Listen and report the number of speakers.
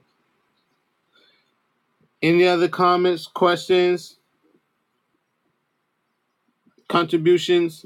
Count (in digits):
1